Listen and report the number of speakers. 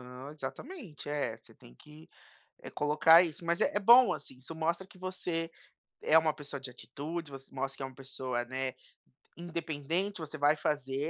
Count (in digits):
1